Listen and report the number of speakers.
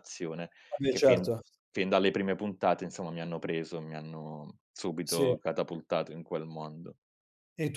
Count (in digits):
2